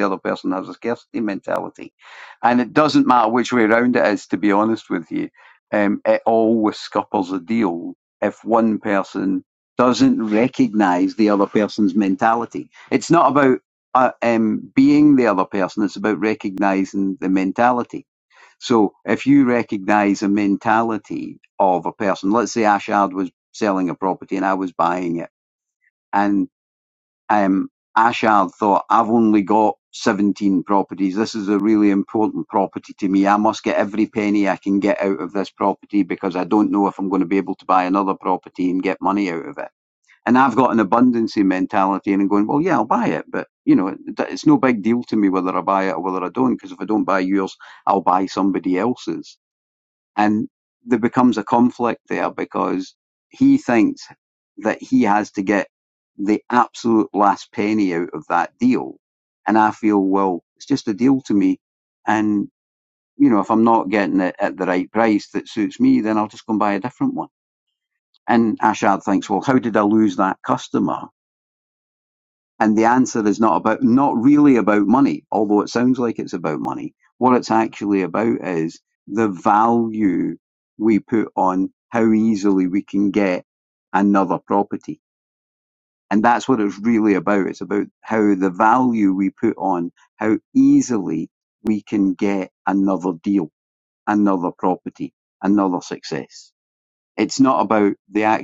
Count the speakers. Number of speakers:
one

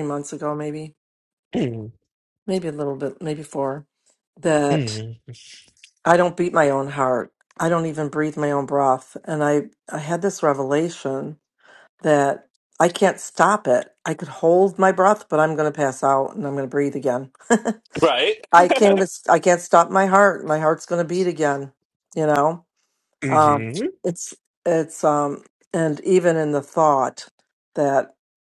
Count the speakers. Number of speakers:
two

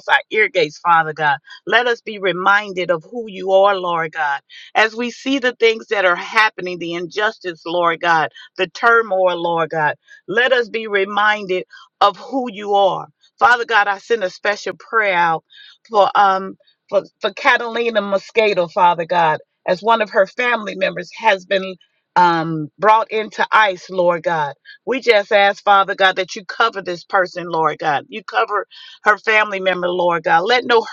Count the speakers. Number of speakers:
one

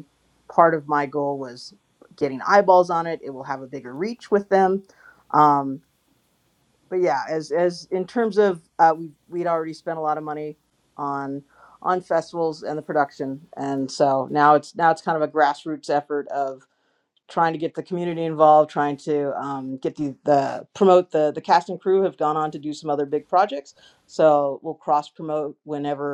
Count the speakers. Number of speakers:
one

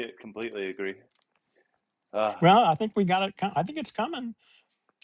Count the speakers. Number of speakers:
two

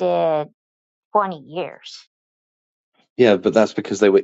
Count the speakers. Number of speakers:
two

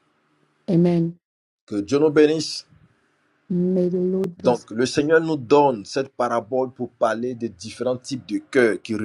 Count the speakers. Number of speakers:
two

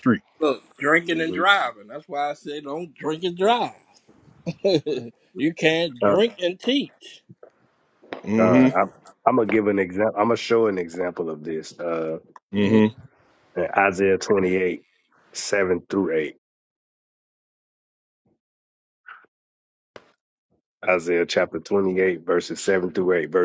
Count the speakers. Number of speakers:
three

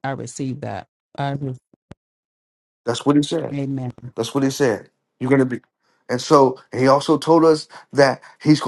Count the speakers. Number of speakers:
two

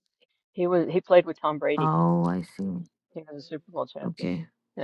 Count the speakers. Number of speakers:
two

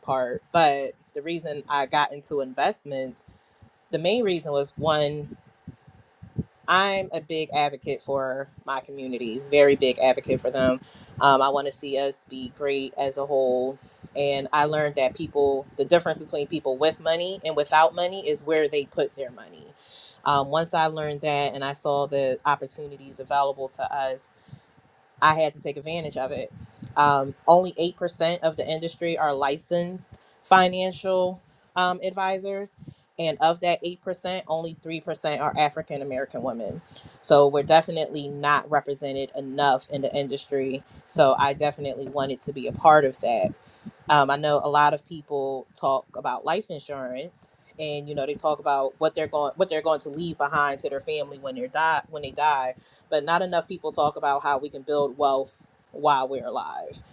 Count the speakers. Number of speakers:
one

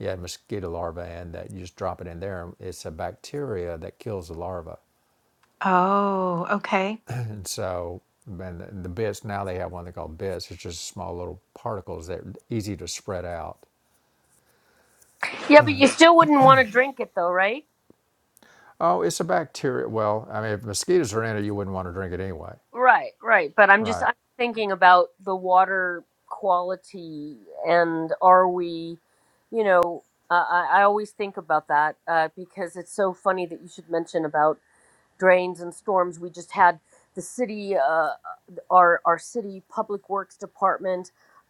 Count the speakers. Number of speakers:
three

